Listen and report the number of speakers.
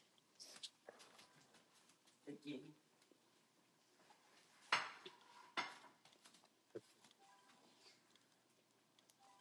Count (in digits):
0